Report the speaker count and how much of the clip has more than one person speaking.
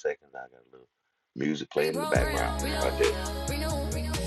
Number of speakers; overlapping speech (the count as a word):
two, about 33%